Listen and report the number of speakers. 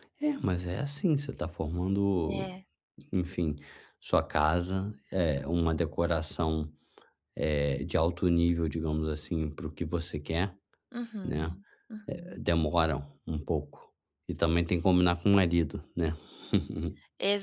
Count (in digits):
2